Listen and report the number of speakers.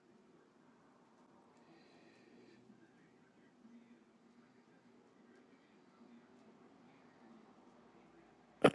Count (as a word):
zero